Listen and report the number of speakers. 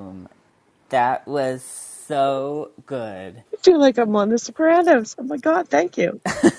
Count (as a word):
two